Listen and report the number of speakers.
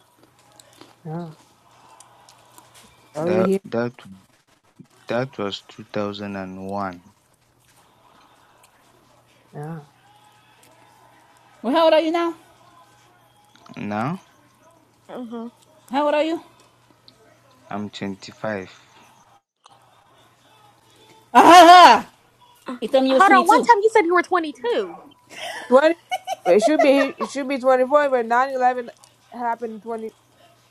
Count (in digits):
4